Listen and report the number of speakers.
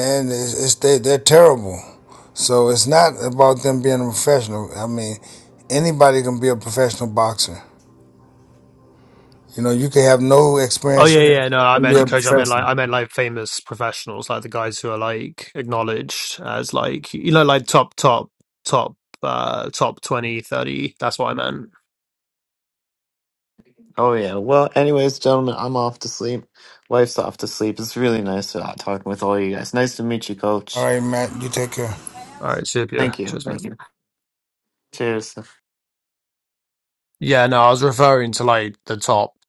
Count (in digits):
3